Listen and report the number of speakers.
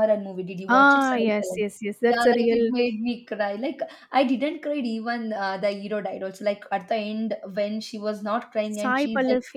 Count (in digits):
2